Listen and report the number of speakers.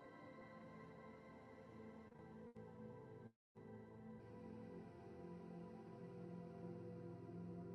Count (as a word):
zero